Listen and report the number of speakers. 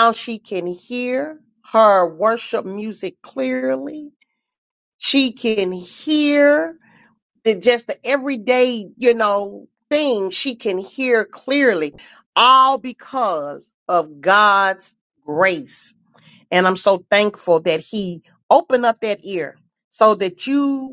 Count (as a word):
one